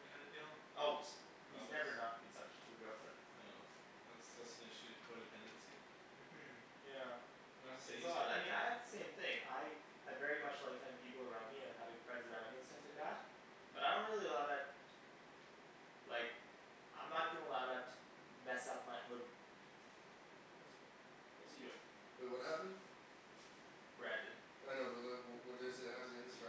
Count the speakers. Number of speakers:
3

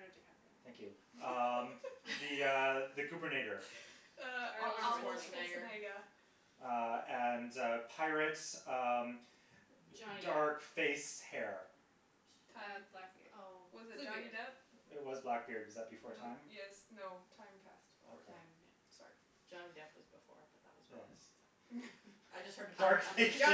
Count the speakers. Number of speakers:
4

